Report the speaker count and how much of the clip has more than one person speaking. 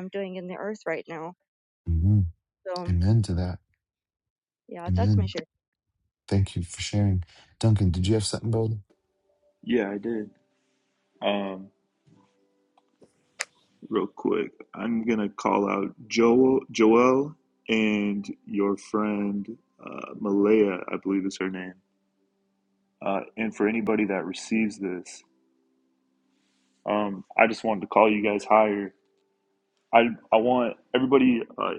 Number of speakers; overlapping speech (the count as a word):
three, about 1%